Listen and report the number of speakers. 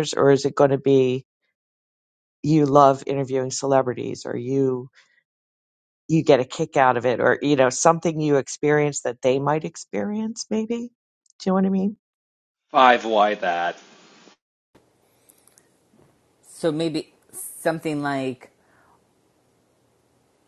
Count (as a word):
three